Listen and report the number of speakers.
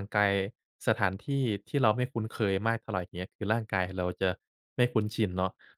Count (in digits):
1